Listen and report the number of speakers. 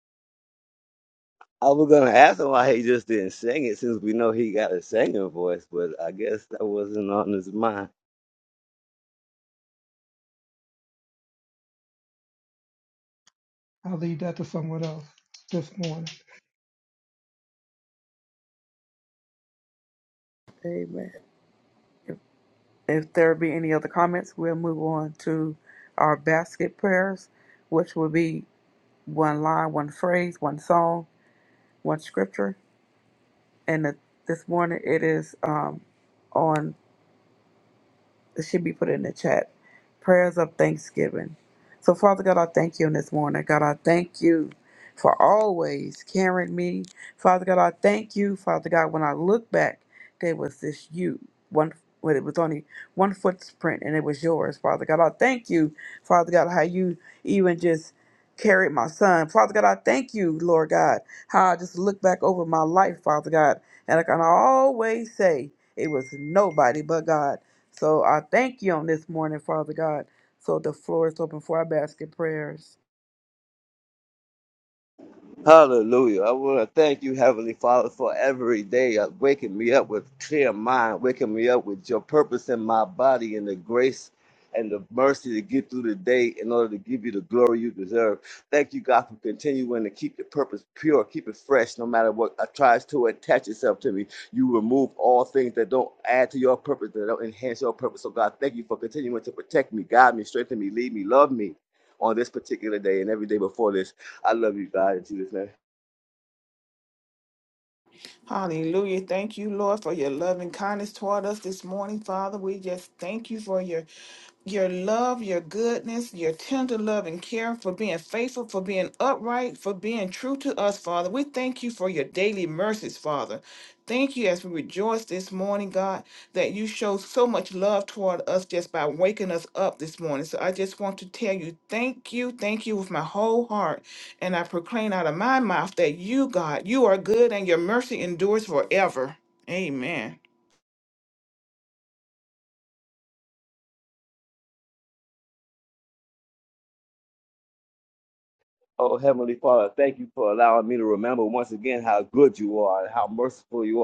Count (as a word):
four